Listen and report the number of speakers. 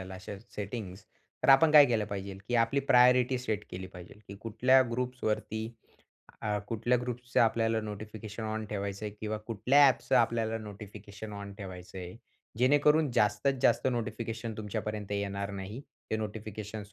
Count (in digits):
1